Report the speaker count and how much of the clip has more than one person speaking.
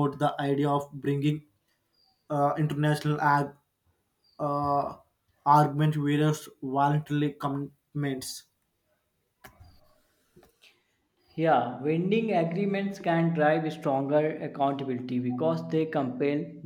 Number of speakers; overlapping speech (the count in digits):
2, no overlap